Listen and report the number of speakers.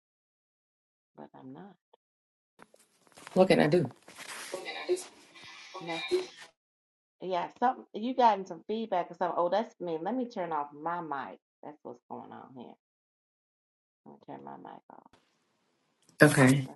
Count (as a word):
two